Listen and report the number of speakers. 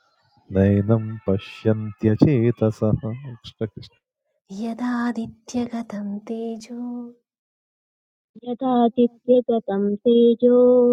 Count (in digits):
3